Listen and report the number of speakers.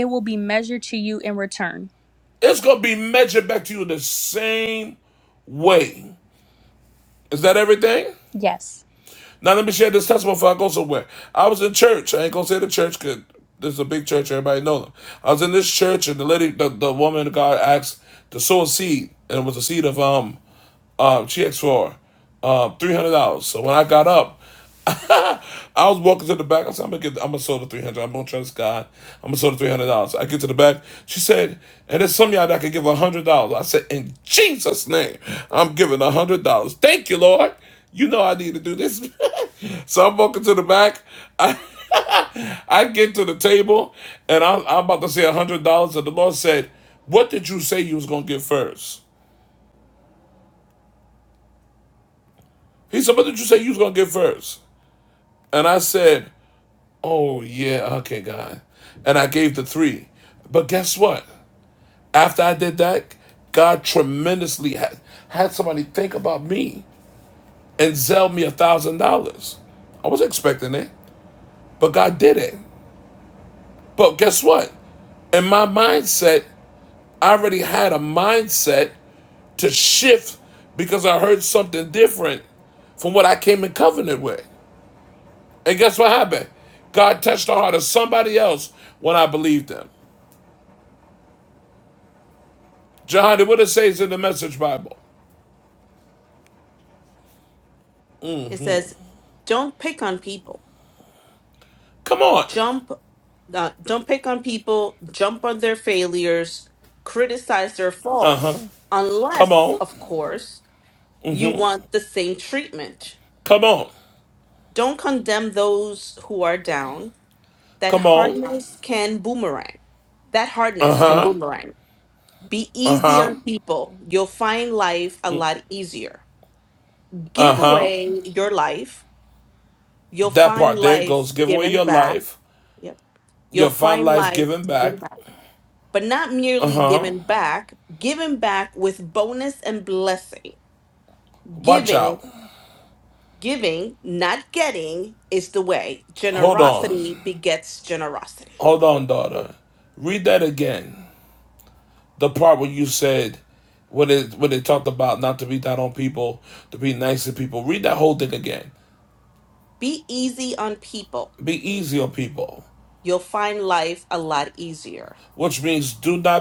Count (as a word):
three